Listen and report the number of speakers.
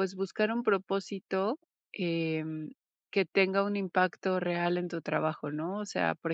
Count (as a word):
one